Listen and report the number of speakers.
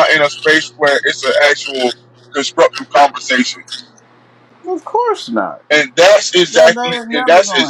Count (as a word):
two